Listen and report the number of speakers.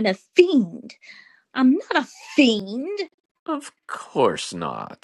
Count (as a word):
two